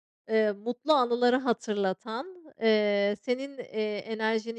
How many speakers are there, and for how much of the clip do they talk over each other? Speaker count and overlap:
one, no overlap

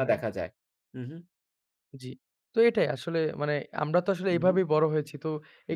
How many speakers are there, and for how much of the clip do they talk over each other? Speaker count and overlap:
two, about 9%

